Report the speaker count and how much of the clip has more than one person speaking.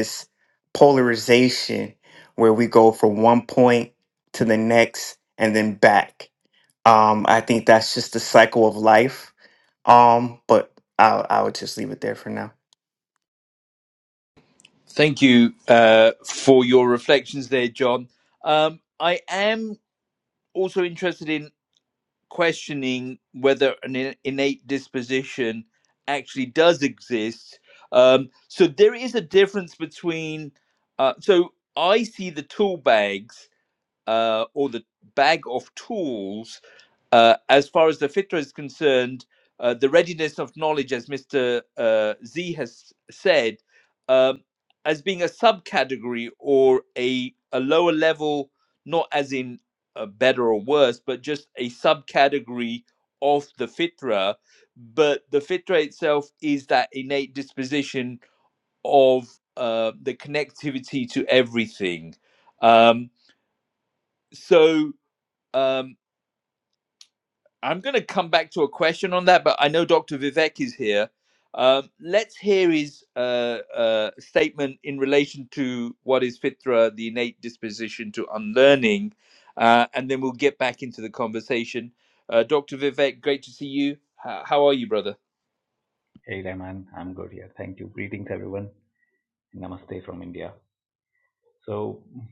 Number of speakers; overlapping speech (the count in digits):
3, no overlap